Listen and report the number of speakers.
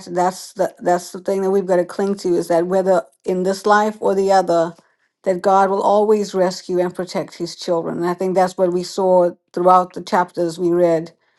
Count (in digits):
1